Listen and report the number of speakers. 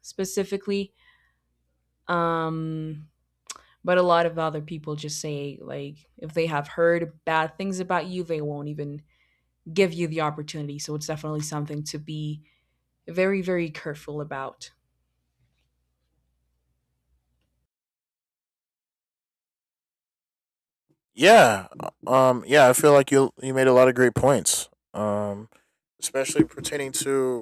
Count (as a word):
two